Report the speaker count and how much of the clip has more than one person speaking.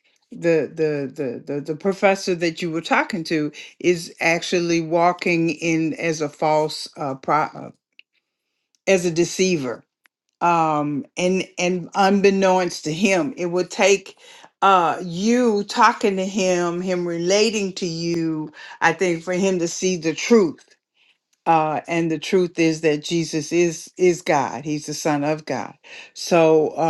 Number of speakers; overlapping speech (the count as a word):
one, no overlap